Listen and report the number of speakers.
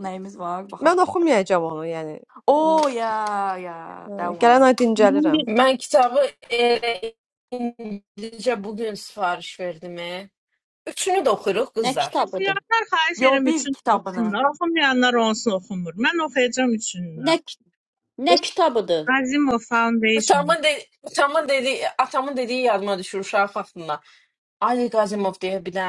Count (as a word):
five